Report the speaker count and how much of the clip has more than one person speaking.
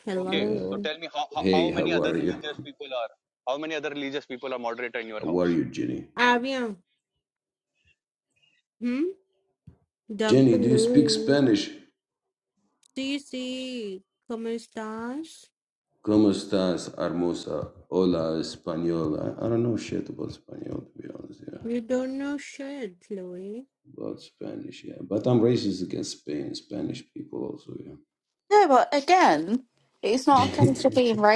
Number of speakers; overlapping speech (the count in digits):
4, about 11%